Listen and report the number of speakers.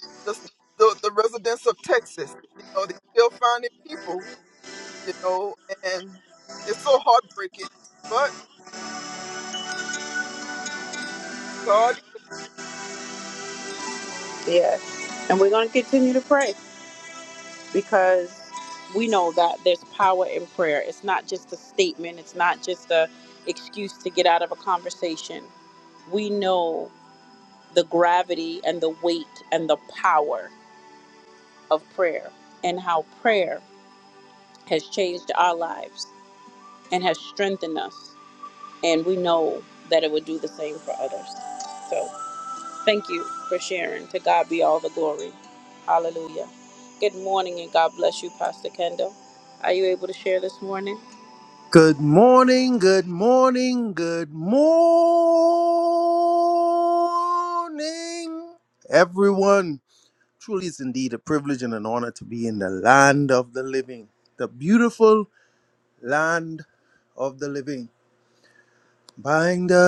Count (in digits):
3